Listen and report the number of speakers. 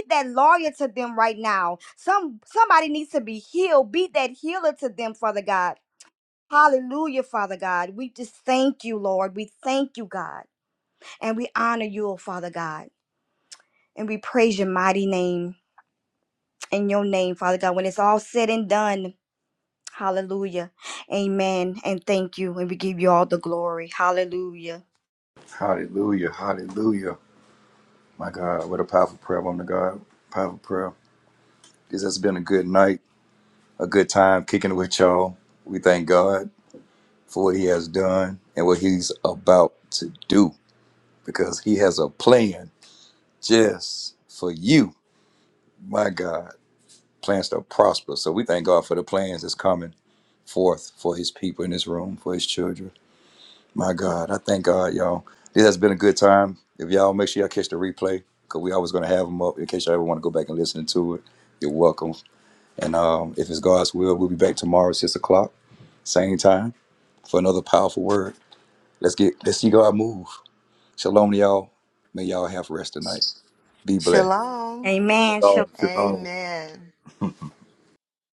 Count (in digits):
3